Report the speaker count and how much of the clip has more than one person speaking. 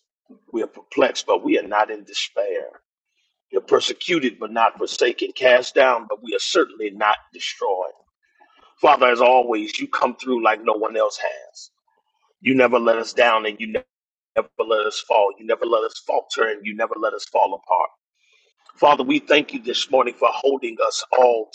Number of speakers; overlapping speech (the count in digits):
1, no overlap